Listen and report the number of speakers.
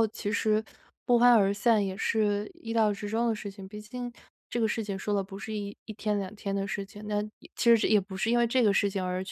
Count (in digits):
1